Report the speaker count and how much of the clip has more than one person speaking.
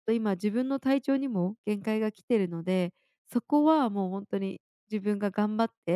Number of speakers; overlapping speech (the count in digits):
1, no overlap